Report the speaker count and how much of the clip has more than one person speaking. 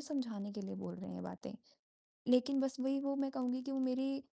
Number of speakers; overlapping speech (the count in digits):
1, no overlap